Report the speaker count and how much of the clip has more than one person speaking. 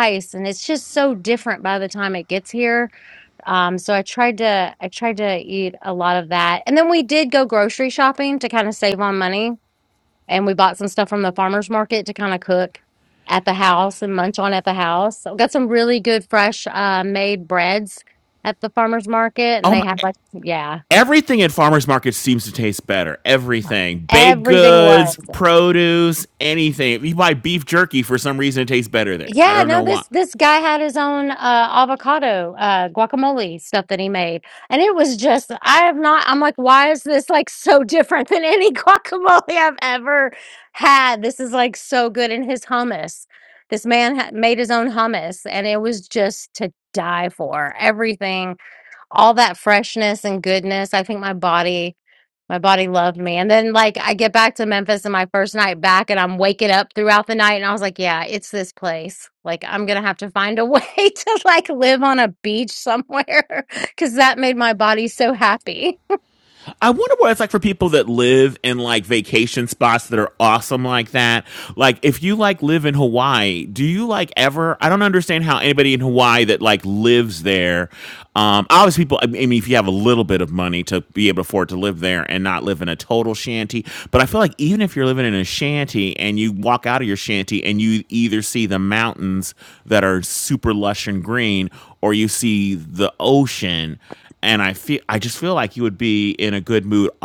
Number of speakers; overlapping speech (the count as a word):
two, about 2%